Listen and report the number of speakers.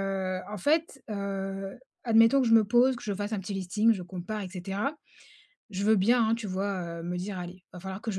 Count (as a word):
one